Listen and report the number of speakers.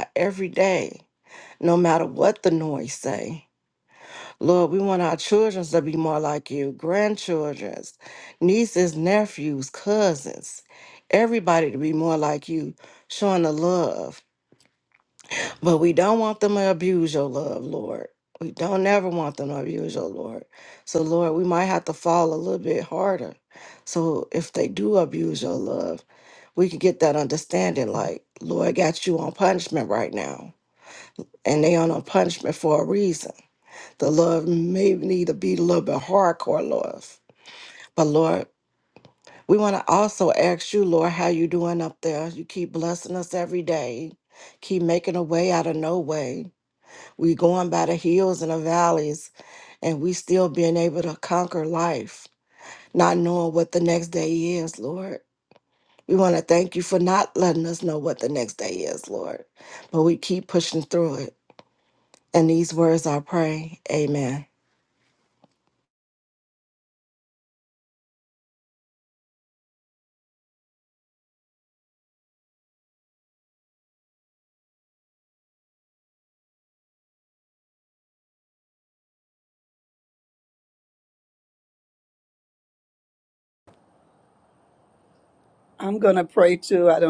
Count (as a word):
two